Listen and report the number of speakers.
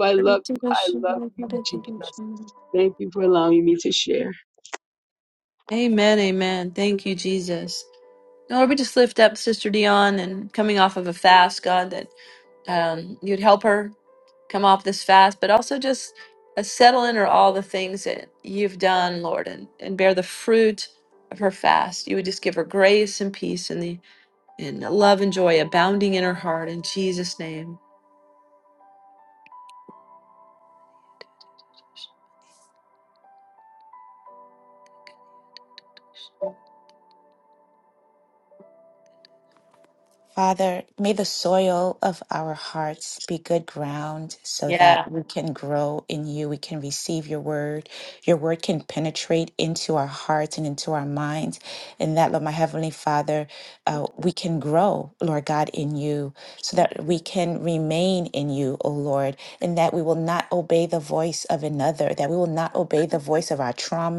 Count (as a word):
three